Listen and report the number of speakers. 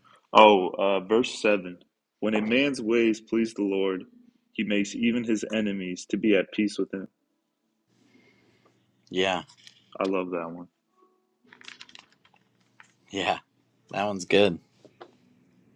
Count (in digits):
2